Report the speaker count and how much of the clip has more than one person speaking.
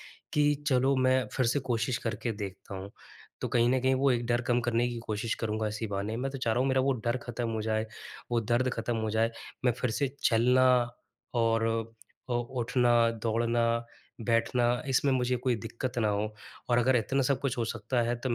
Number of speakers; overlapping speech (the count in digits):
1, no overlap